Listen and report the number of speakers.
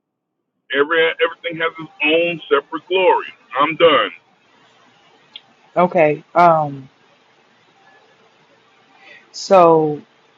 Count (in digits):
2